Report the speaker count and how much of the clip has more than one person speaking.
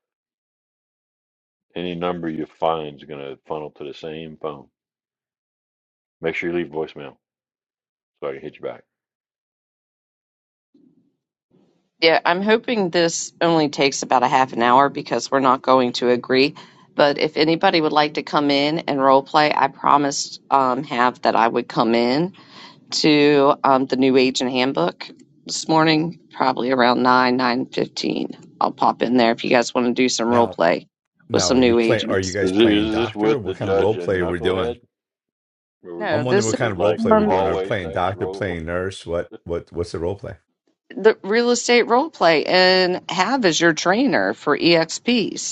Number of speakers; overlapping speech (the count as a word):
three, about 13%